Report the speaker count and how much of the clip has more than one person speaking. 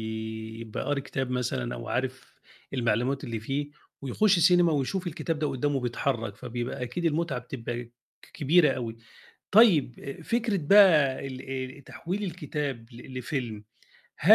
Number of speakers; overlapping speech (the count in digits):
1, no overlap